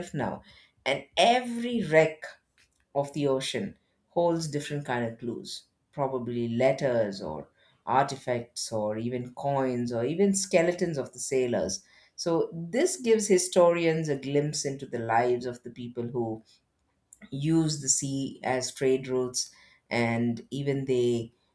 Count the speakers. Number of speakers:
1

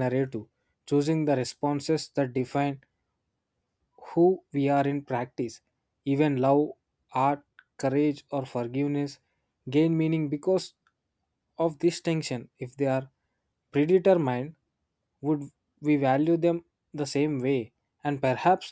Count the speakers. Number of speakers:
1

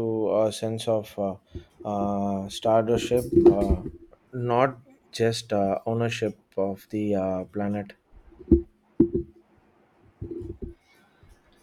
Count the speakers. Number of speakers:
1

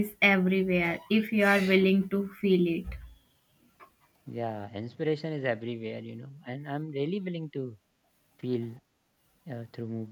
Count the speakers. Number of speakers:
2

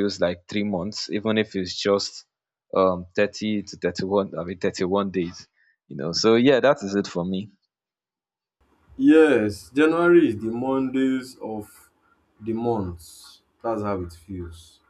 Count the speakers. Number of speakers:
2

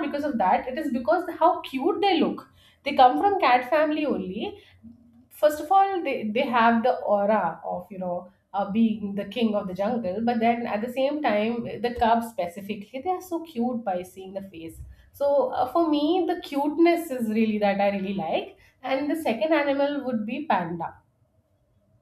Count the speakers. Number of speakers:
1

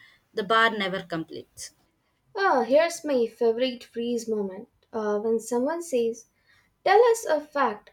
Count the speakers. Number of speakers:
2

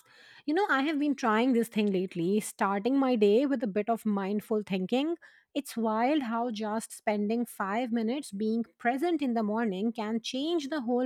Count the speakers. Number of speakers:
1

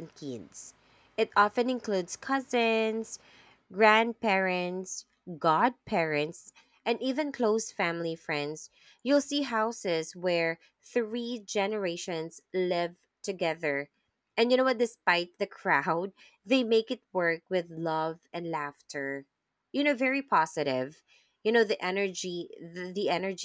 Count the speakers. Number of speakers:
1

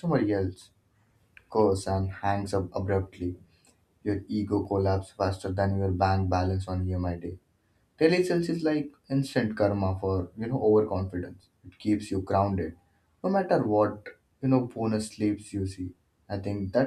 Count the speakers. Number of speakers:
1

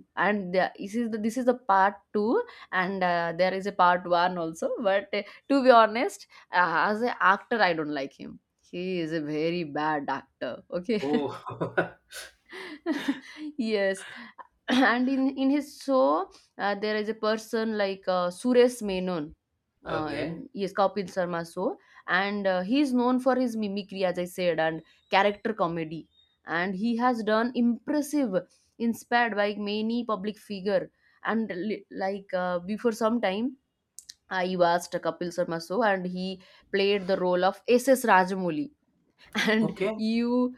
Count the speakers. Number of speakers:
2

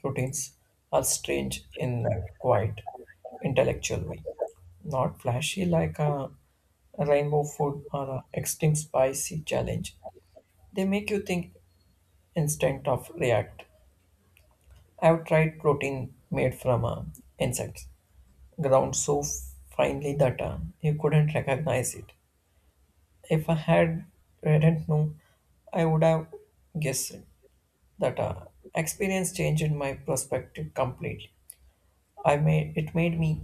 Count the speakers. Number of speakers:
1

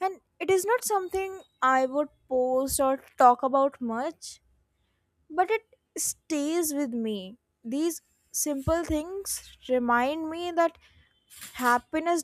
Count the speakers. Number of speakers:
1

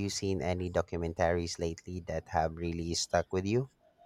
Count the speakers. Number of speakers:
1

